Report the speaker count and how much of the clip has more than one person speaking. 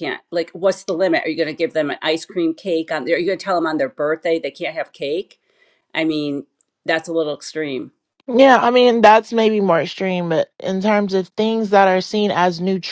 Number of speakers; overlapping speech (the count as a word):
two, no overlap